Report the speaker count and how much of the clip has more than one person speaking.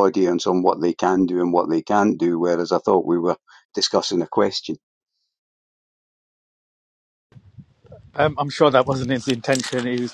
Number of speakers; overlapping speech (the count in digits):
2, no overlap